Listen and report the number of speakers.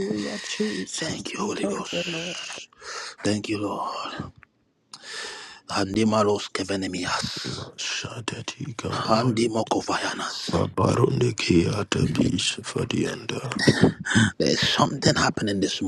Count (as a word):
three